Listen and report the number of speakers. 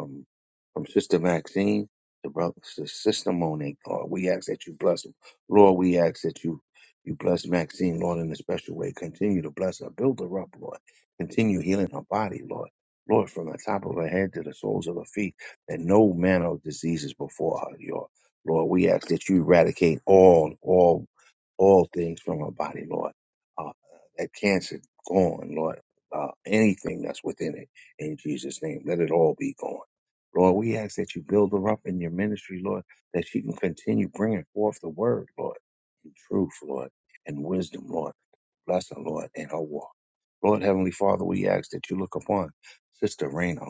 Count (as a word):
one